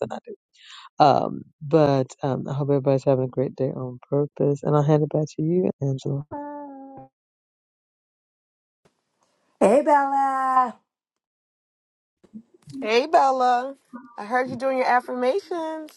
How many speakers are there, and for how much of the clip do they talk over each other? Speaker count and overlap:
3, no overlap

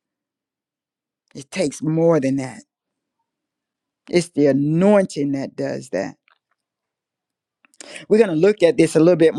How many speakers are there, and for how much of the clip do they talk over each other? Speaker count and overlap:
1, no overlap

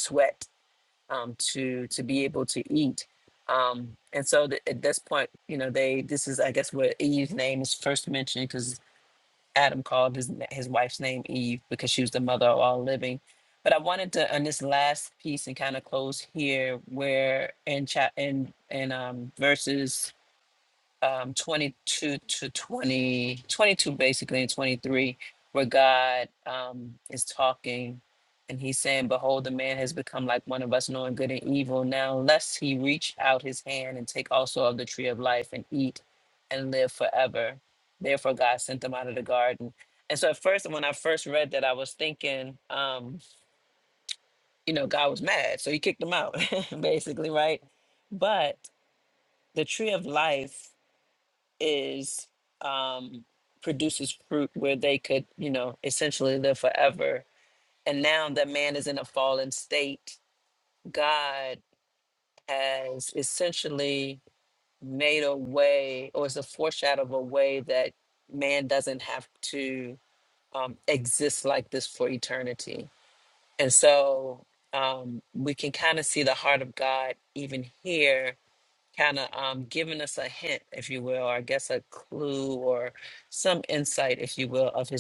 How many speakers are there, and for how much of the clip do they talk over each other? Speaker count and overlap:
1, no overlap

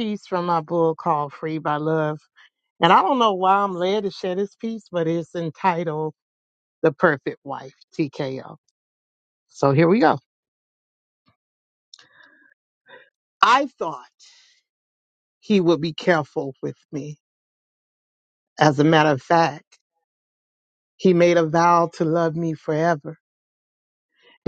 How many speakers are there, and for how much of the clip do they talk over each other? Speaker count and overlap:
1, no overlap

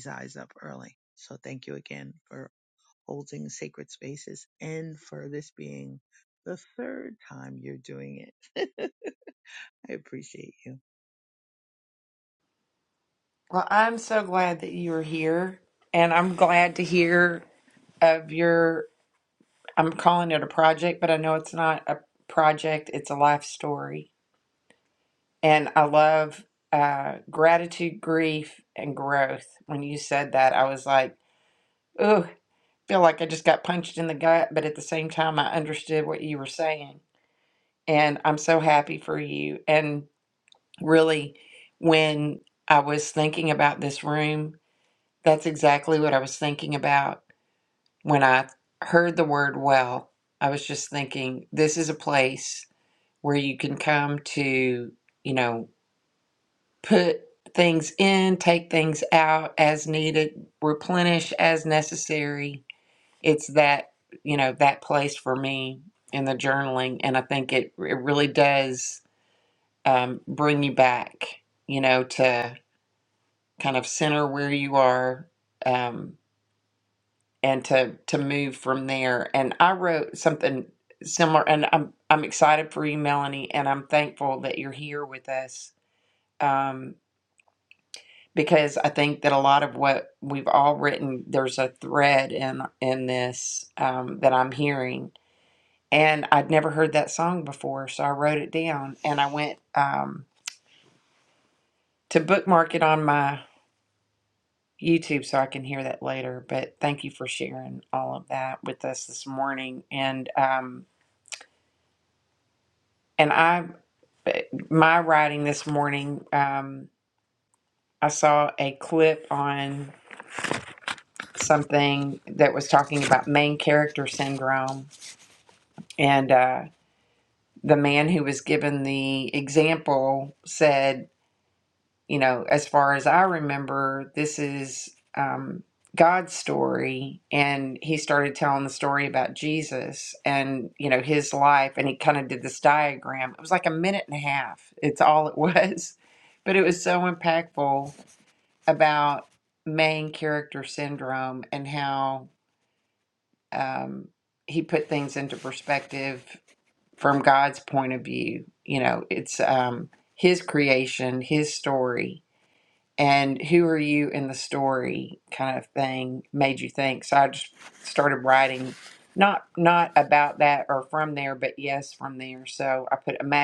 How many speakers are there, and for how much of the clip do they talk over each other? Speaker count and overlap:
2, no overlap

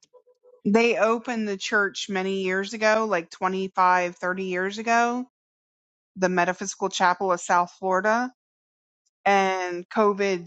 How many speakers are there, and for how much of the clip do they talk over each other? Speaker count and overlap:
1, no overlap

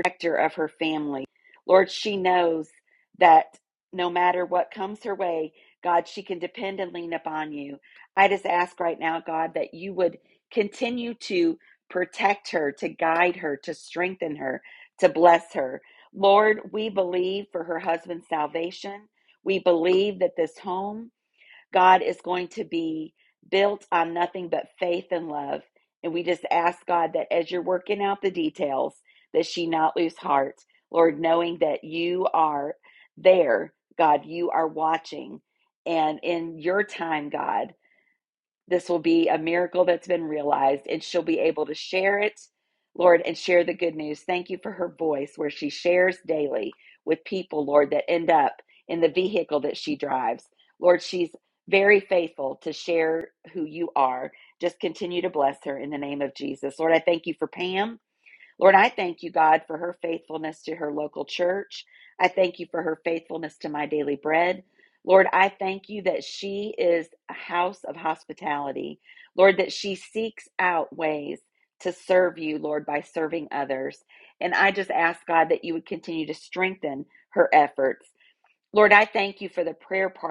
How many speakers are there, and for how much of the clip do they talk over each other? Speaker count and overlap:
1, no overlap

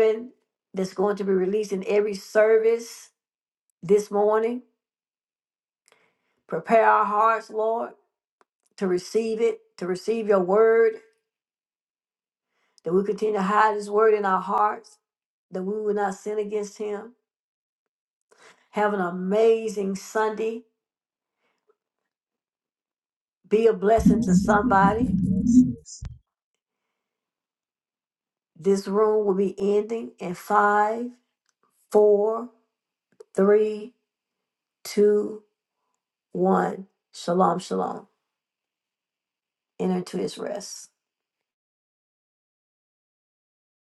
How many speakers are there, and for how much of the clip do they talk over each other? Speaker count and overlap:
2, about 3%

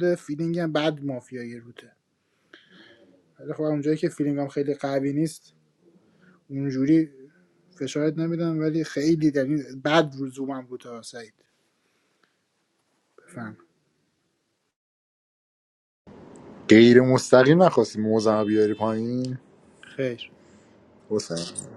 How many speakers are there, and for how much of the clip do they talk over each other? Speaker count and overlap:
2, no overlap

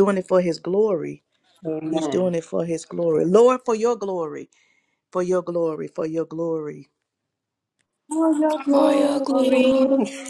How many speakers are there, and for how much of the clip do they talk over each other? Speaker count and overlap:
3, about 13%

